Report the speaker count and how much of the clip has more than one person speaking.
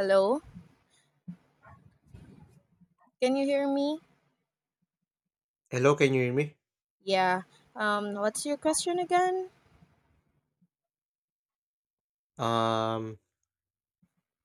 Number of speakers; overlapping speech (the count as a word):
two, no overlap